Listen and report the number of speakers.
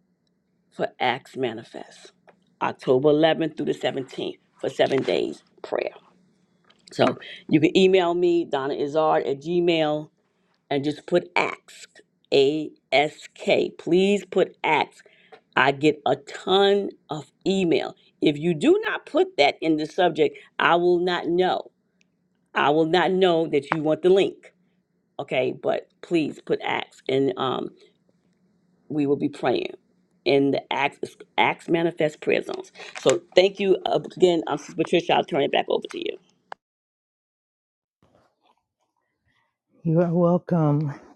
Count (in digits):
2